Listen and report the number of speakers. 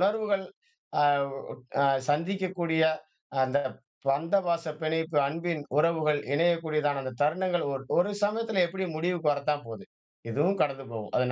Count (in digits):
1